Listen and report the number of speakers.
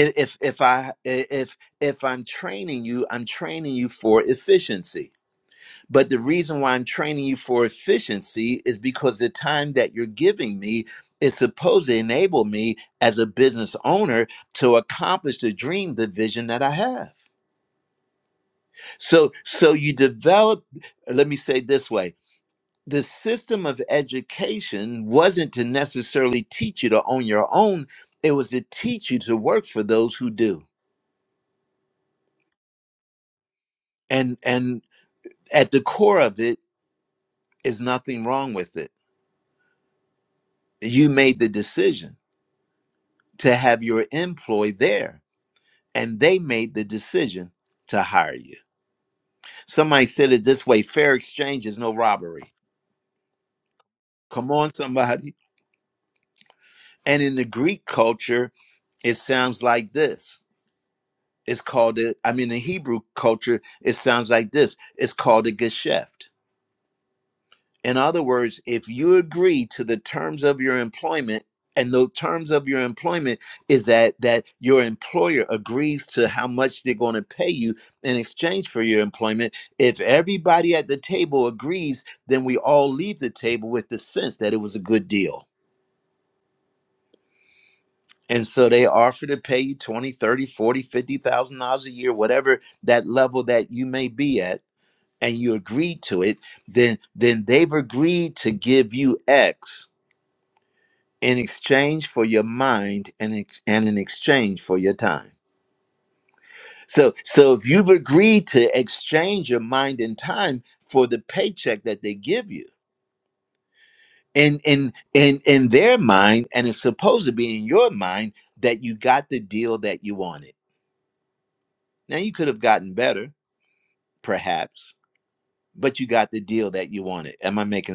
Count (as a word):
one